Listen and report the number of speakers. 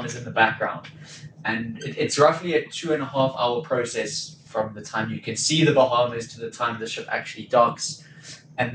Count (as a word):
one